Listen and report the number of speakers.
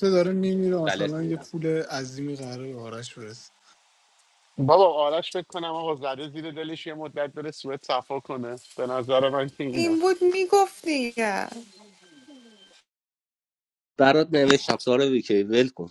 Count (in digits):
4